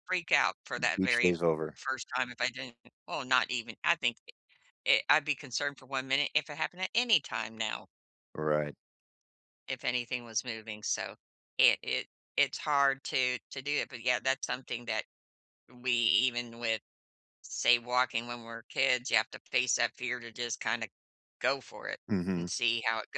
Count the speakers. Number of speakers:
2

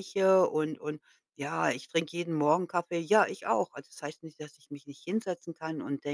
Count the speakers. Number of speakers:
1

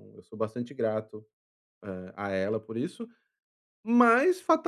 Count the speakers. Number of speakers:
1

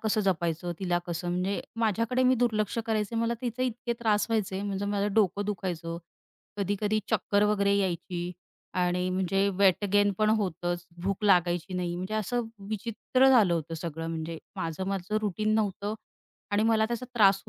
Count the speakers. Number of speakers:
1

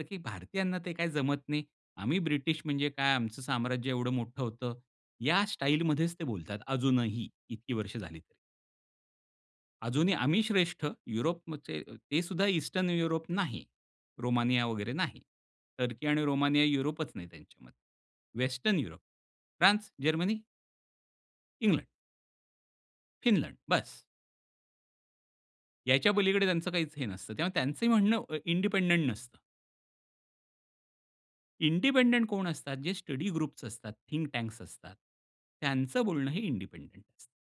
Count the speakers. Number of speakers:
1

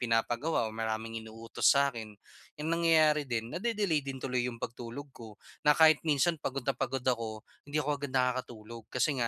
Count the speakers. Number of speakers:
1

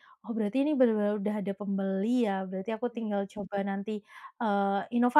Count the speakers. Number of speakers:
1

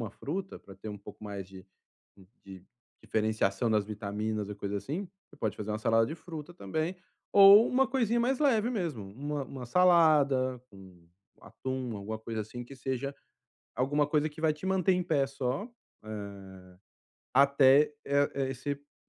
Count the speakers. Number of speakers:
1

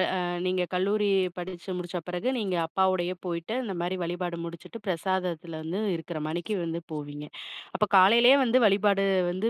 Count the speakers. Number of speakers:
1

